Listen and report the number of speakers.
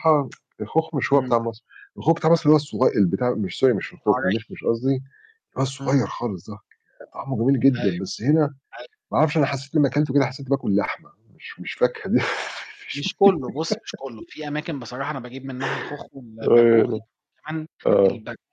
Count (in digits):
2